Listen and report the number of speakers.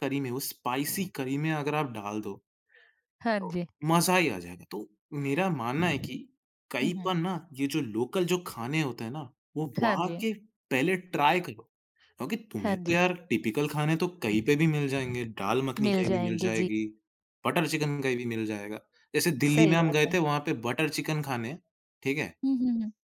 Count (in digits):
2